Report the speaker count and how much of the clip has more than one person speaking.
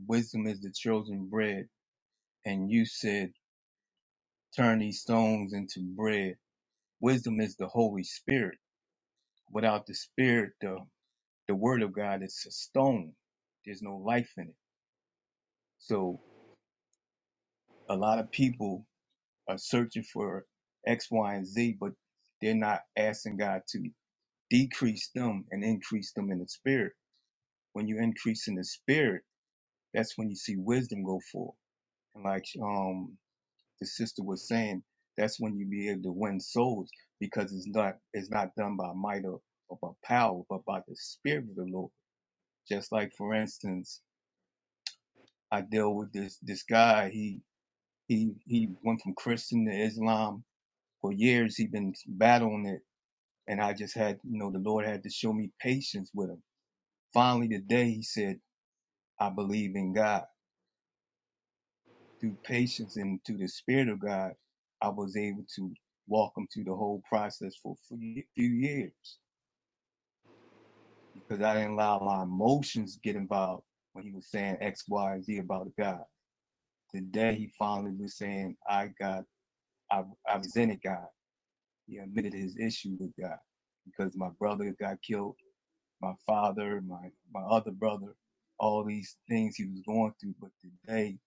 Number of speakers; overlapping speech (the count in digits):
1, no overlap